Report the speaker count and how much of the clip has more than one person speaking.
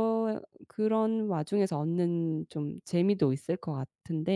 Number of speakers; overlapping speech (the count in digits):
1, no overlap